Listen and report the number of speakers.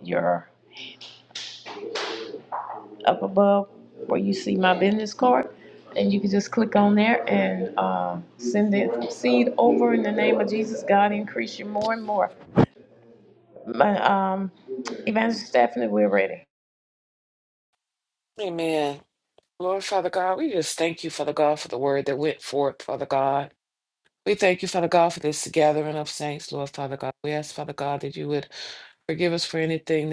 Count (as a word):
two